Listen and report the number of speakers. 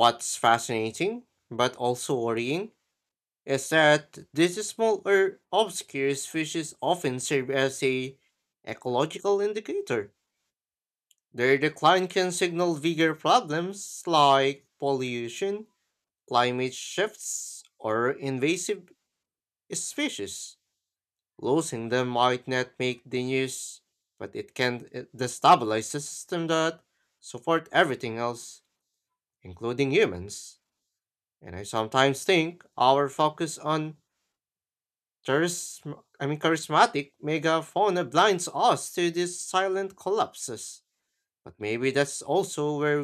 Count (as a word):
one